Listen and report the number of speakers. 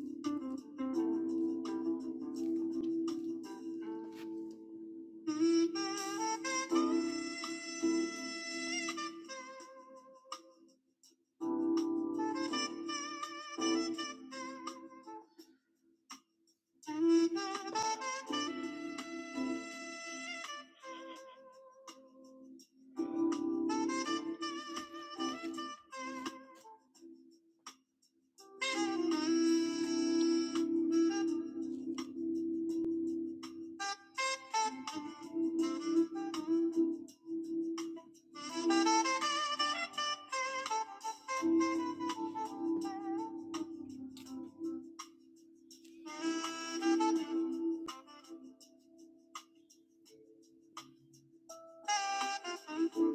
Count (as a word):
zero